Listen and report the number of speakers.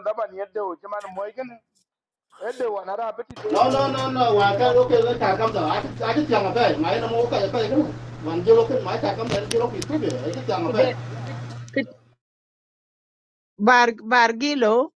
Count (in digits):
3